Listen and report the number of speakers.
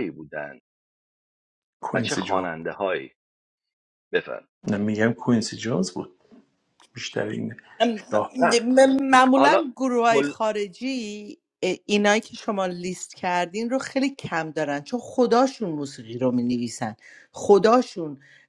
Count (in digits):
3